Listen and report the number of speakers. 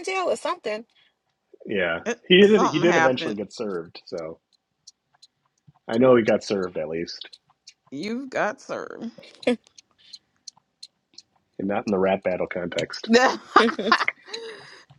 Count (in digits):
3